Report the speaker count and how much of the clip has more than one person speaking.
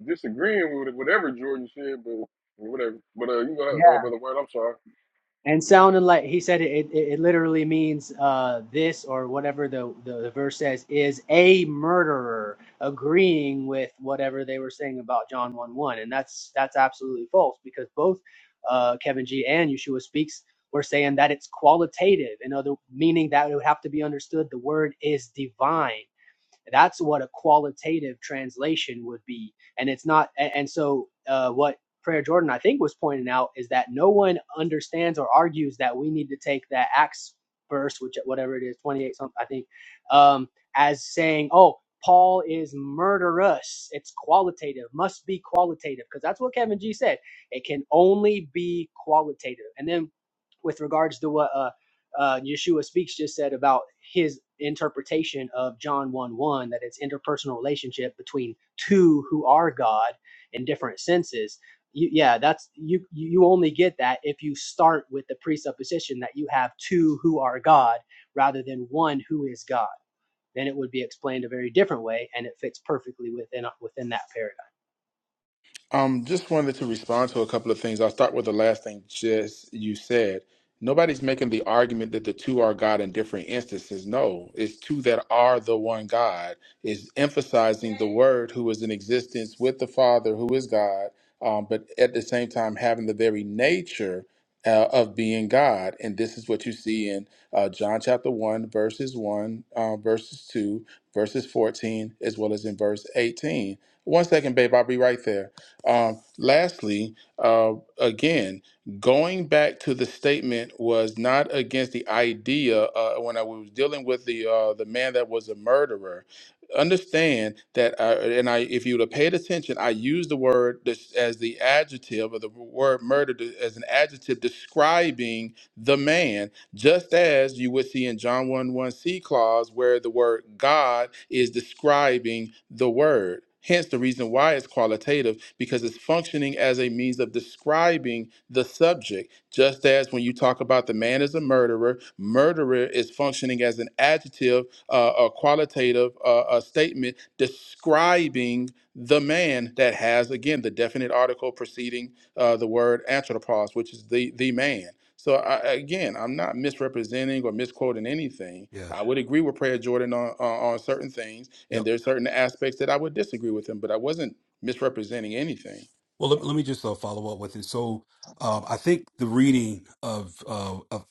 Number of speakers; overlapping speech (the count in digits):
4, under 1%